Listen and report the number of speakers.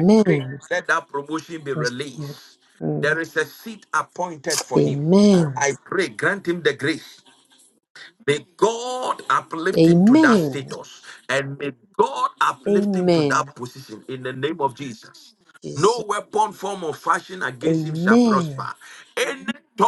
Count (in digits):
2